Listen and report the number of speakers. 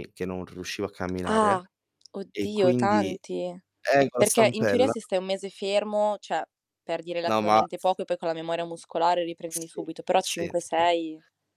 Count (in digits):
2